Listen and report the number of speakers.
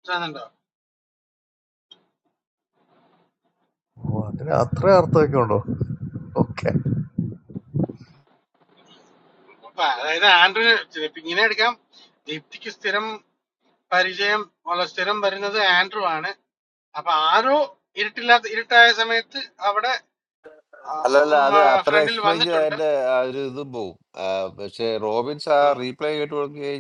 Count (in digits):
3